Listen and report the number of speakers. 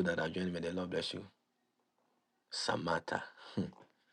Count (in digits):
1